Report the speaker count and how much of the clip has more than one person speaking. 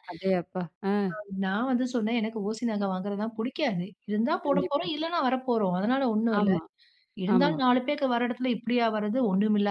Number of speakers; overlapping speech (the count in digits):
2, about 10%